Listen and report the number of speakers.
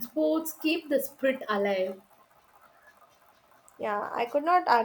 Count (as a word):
two